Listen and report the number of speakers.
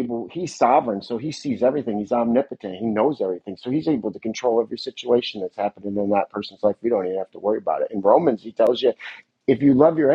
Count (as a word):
one